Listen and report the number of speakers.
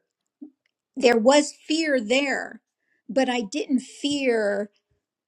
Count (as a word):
one